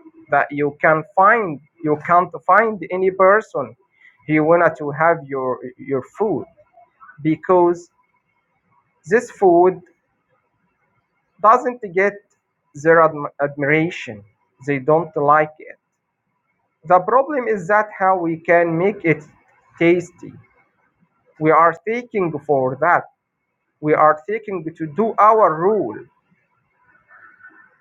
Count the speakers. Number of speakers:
one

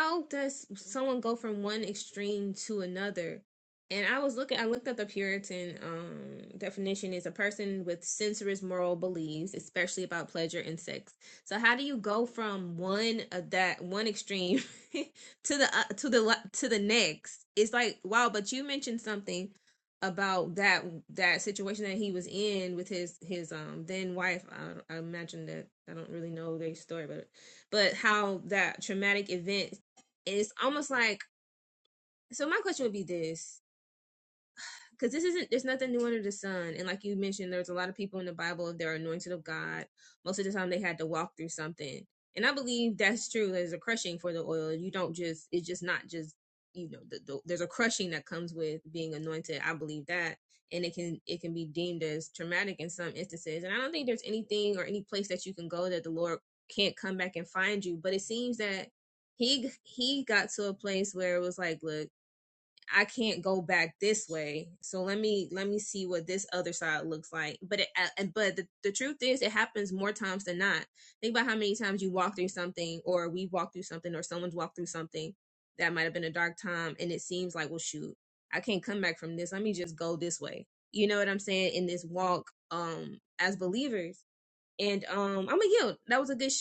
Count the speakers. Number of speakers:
one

